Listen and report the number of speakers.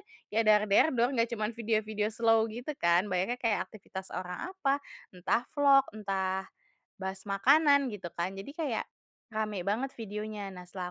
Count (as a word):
one